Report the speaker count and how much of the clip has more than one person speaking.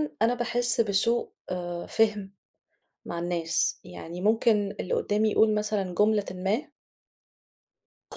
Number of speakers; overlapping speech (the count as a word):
one, no overlap